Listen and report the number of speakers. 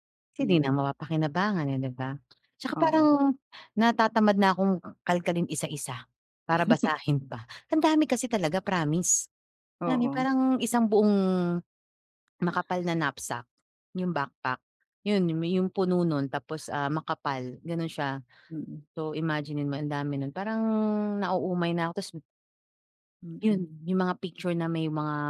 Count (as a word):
two